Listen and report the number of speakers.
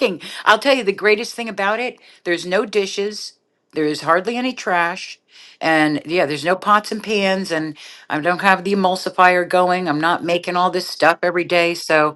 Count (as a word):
one